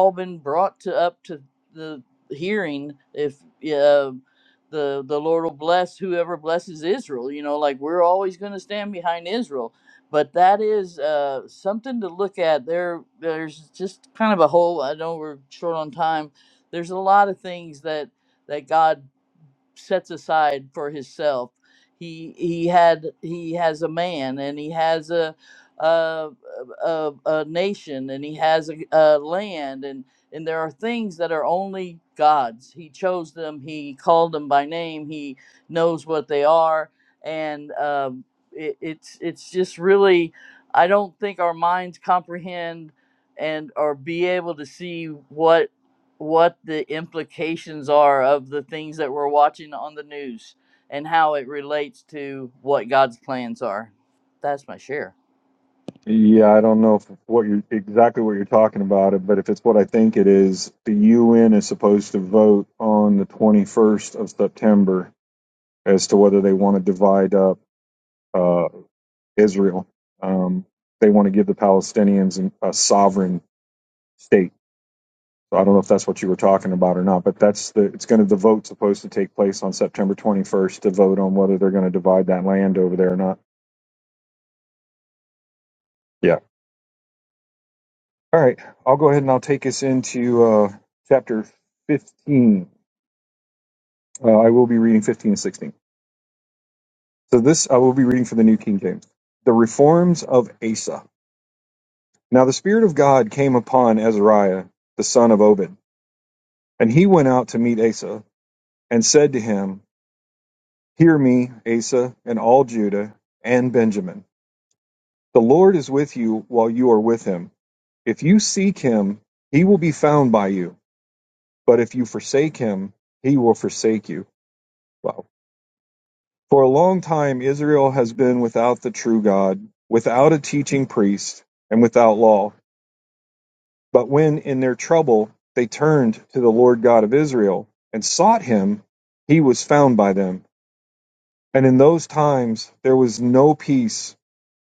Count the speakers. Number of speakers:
2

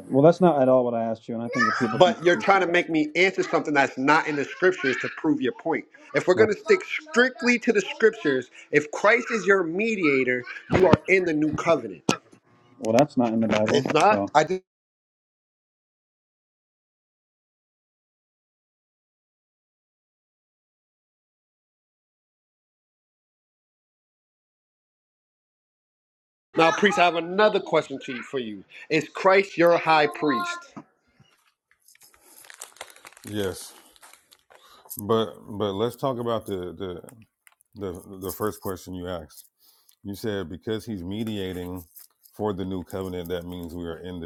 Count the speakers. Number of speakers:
3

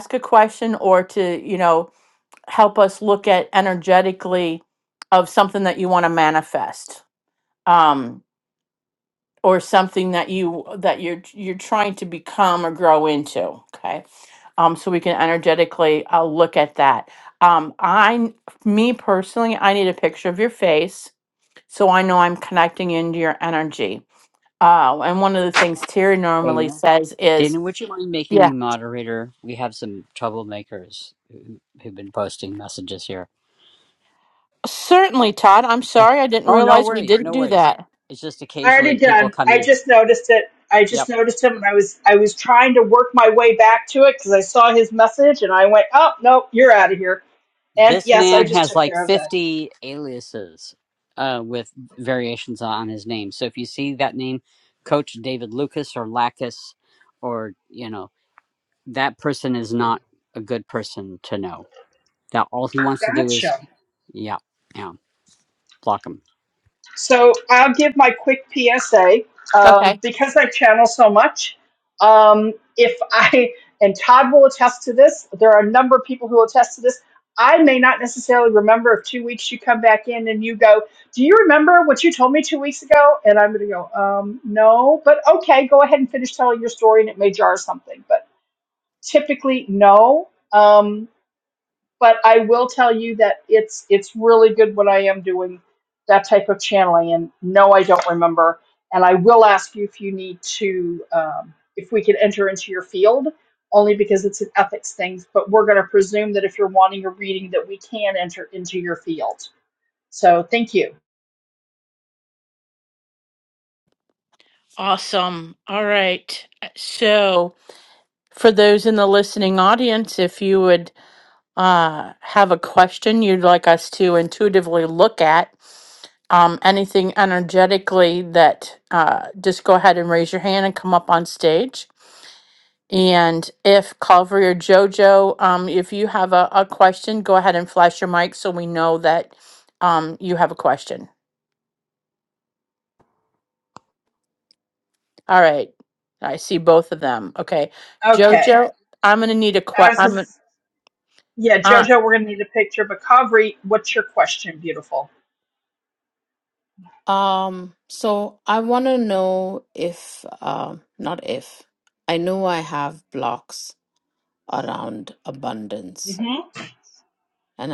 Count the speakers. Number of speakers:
4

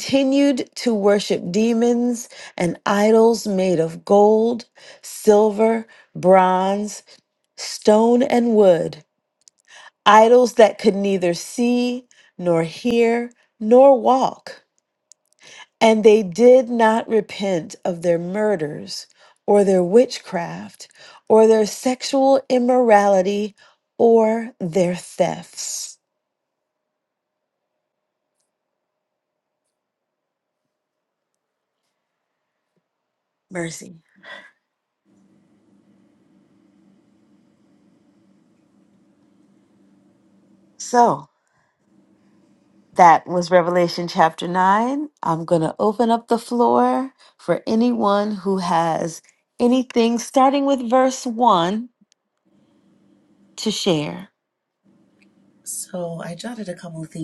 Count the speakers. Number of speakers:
2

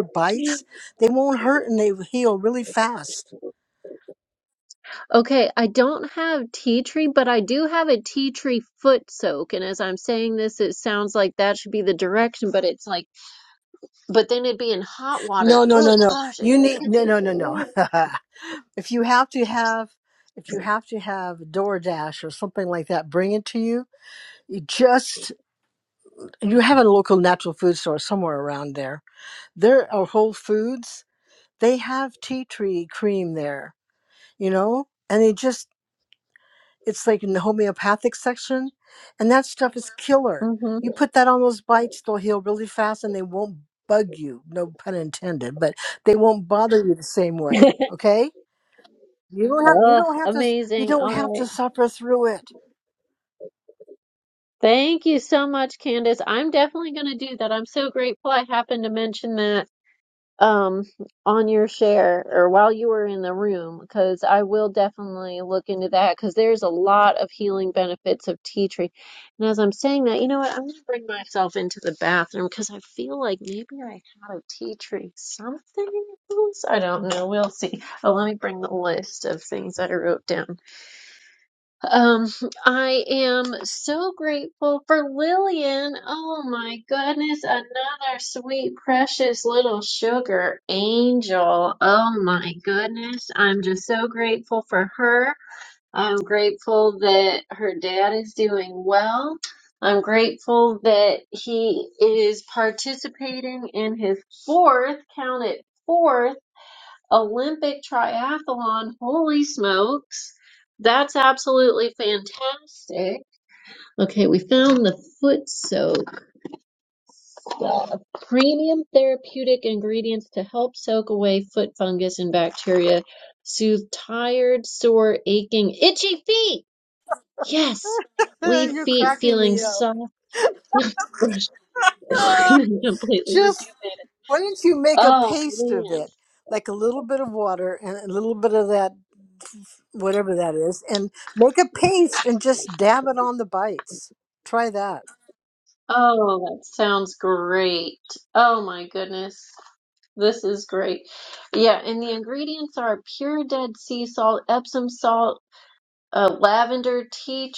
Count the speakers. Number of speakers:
2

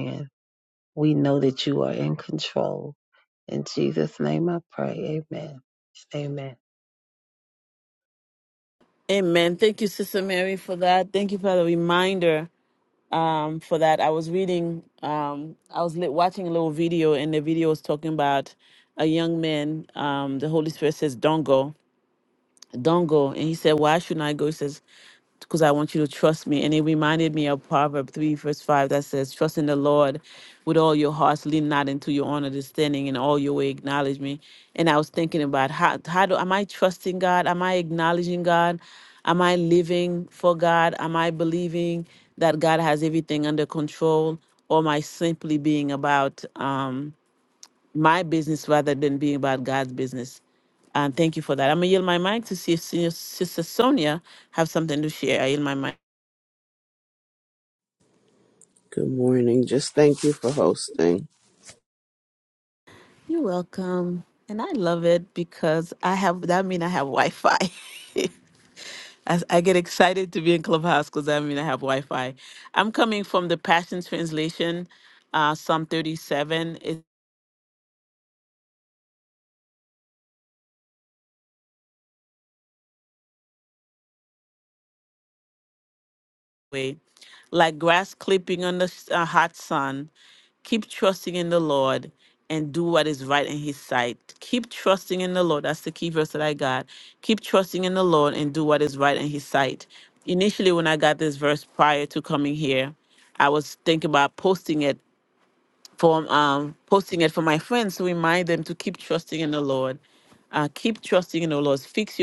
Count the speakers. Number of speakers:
3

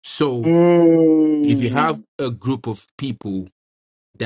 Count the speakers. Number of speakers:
2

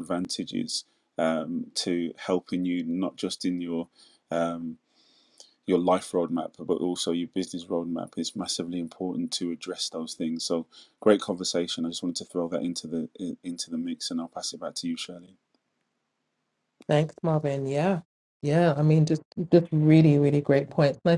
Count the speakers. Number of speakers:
2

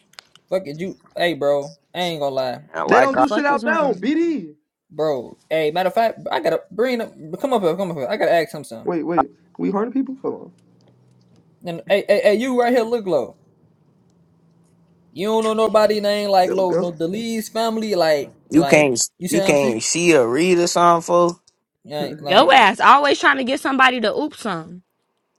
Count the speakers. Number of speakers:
4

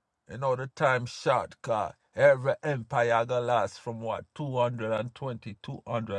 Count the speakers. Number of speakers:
1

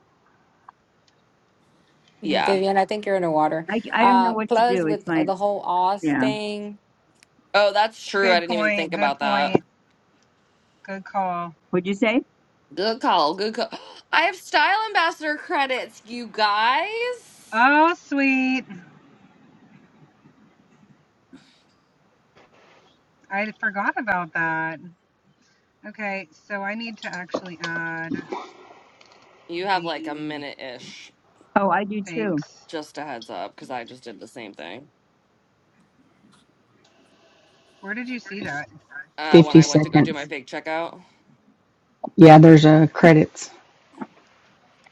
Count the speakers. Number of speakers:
5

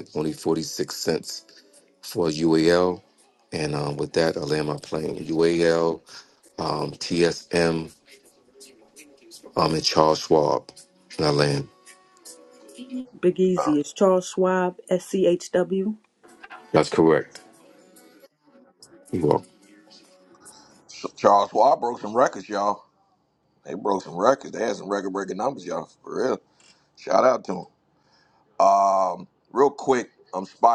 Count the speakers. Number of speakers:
3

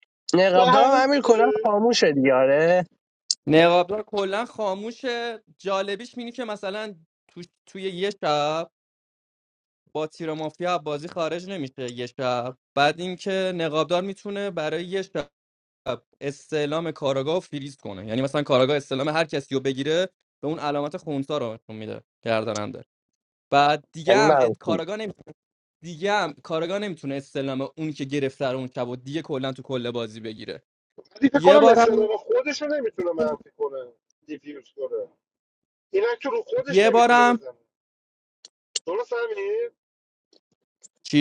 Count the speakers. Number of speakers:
3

